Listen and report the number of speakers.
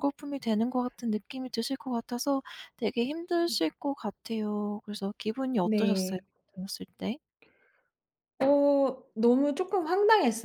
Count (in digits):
2